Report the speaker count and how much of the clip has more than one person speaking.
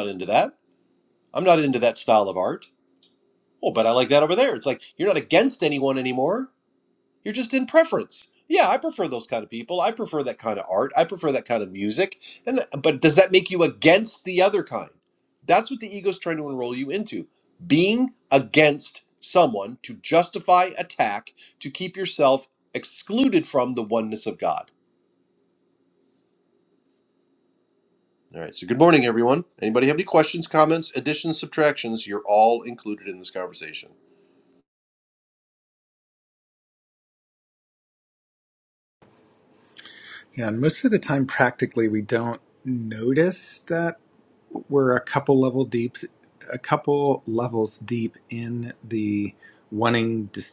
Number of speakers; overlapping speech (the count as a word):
two, no overlap